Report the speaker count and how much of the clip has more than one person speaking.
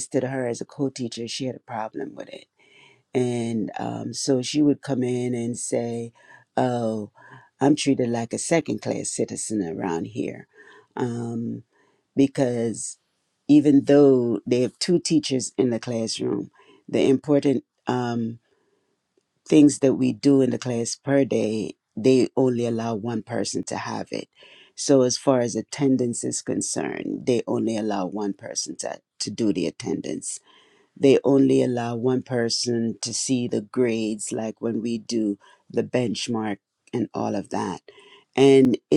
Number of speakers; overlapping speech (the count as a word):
one, no overlap